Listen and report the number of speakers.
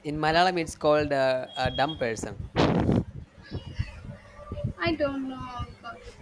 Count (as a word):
two